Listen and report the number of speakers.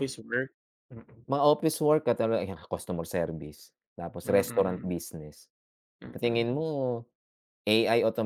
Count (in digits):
2